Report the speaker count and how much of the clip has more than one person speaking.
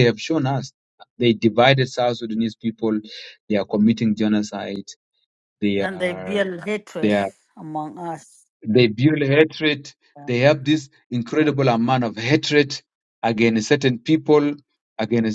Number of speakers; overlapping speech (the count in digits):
2, about 5%